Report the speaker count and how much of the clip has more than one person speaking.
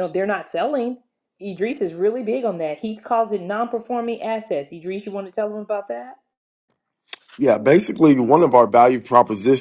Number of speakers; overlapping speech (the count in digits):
2, no overlap